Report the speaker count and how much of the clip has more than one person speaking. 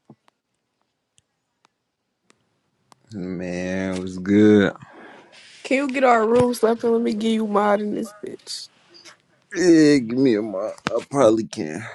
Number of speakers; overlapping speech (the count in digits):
2, no overlap